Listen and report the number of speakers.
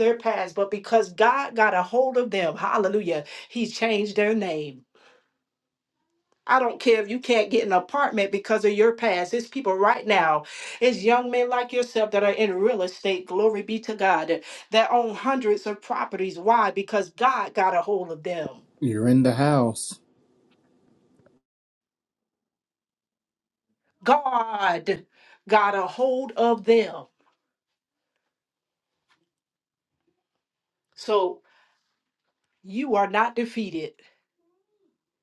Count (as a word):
two